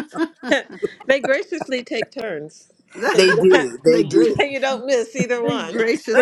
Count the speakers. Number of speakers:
three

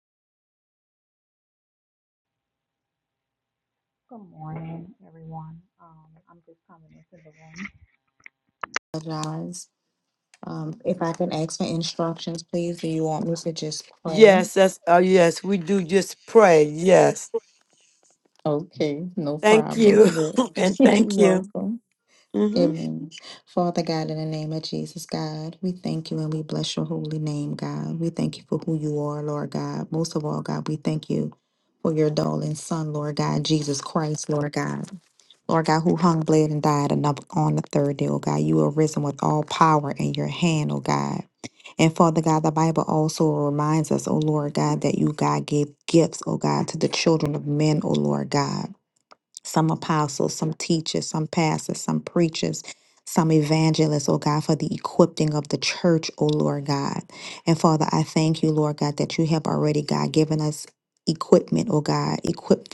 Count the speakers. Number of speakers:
two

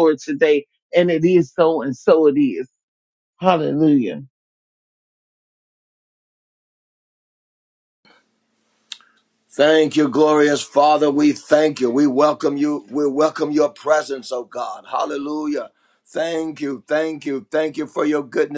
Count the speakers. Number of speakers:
two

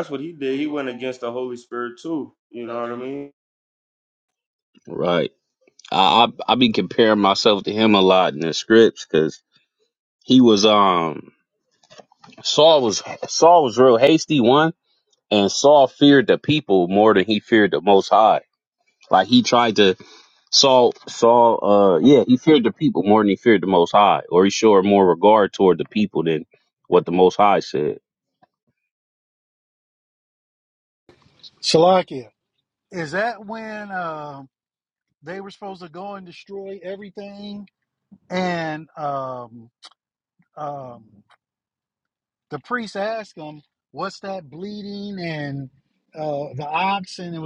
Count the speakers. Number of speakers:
three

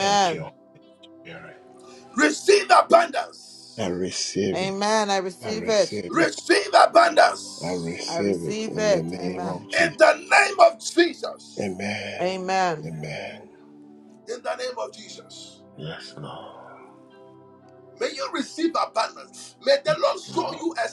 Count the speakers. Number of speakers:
three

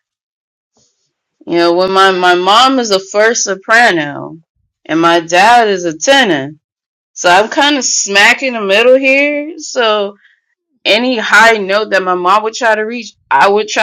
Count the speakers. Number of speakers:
one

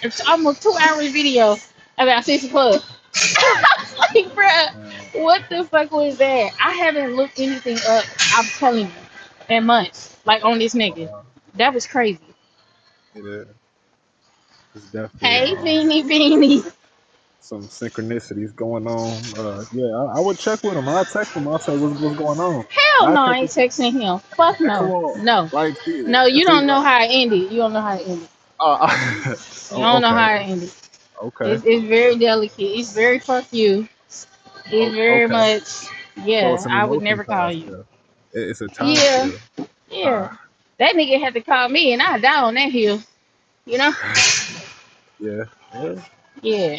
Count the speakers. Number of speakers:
two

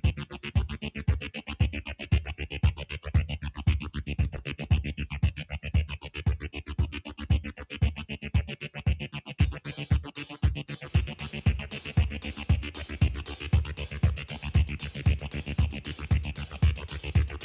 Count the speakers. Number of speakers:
zero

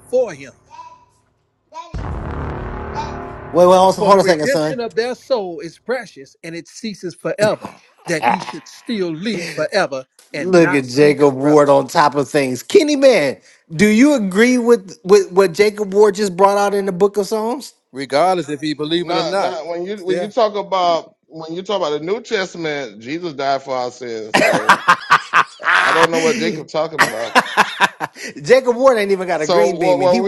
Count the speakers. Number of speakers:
three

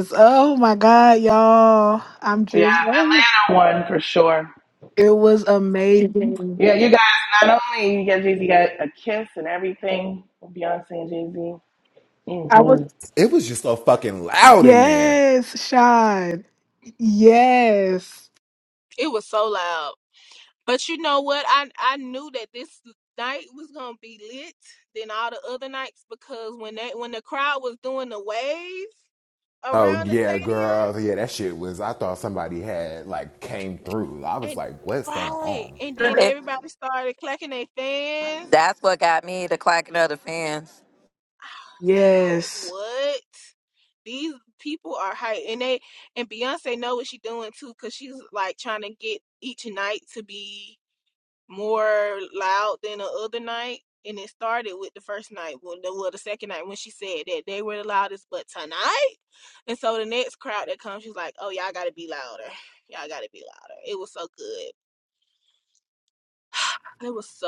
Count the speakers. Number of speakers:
five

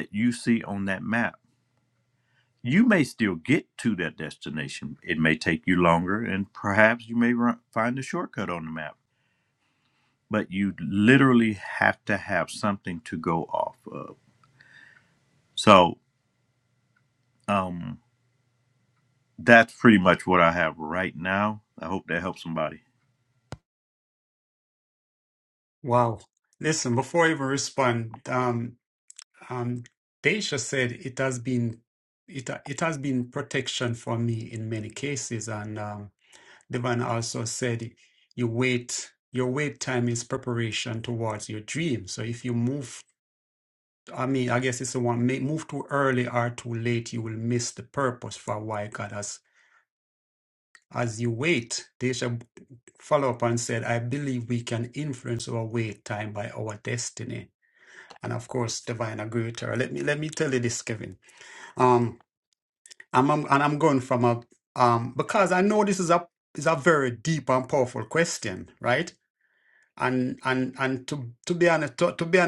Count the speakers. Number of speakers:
two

